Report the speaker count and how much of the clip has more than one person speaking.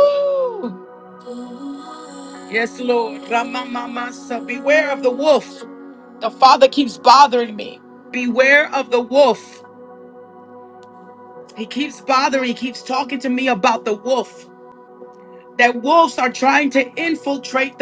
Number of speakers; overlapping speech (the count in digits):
1, no overlap